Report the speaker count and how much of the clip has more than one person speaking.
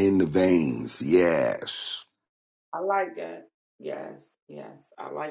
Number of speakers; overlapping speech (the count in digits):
2, no overlap